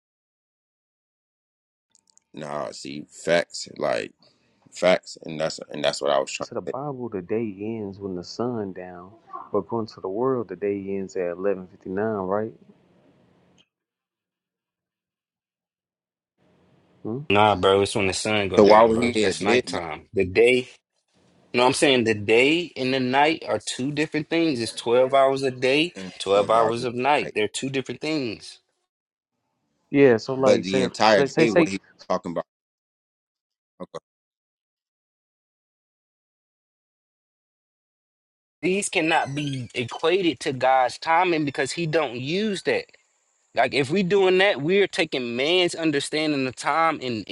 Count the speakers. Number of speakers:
3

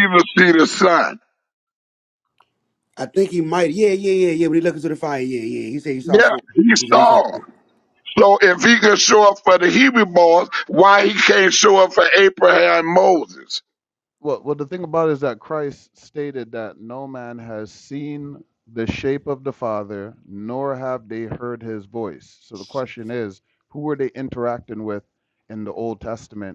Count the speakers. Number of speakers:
3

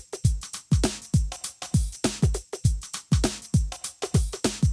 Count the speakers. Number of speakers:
0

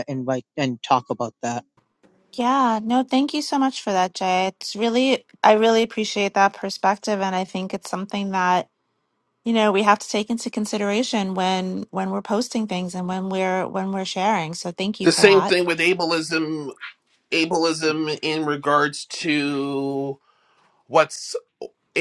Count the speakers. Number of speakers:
3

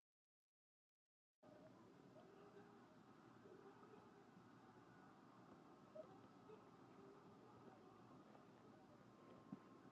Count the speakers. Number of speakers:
0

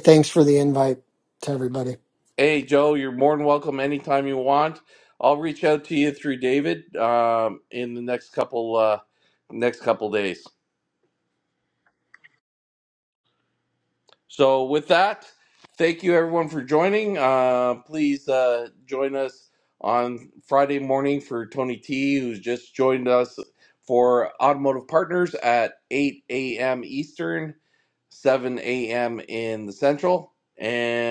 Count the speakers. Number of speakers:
2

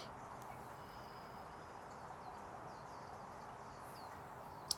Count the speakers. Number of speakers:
0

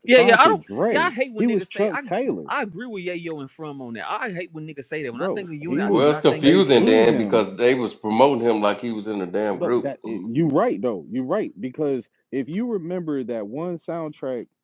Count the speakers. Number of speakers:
3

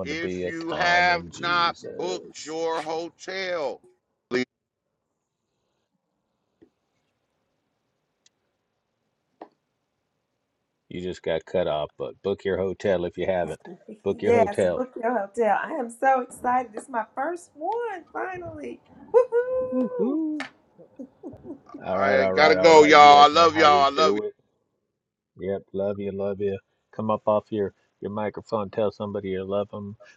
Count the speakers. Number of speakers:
3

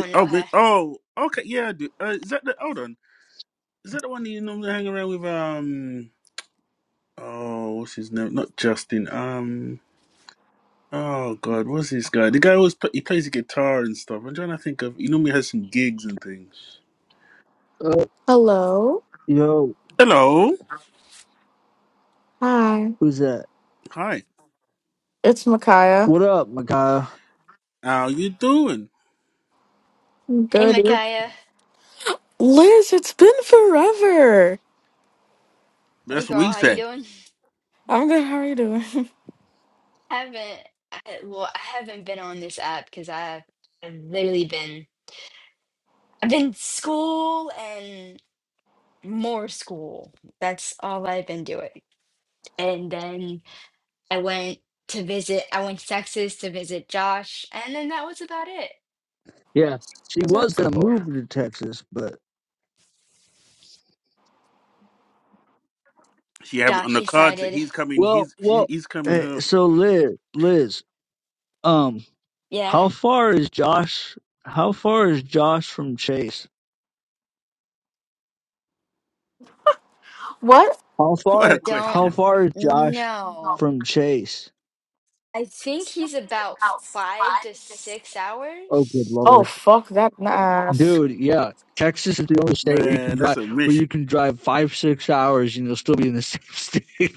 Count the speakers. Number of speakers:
4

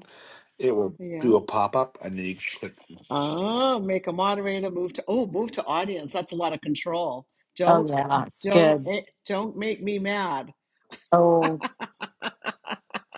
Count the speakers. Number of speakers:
3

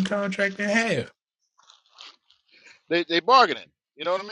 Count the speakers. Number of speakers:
2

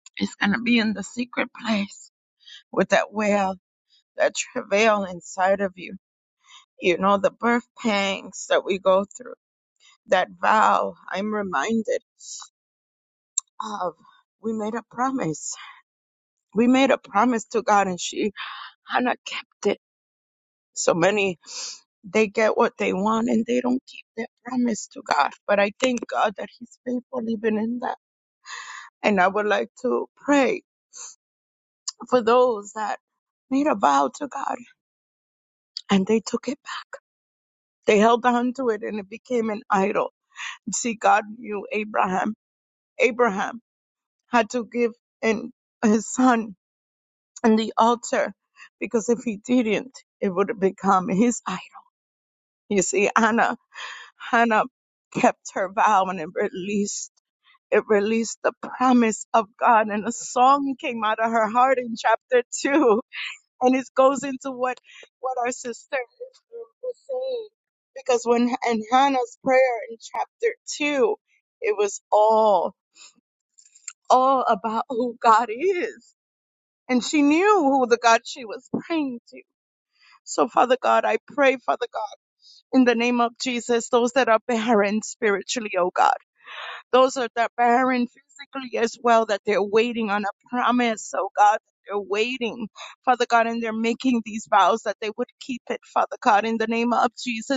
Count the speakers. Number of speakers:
1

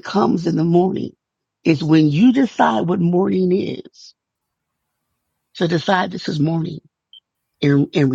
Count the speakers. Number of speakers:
1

